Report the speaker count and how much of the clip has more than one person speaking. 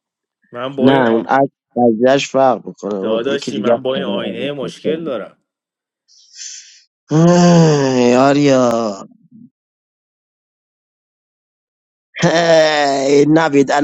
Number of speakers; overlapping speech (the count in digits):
2, about 19%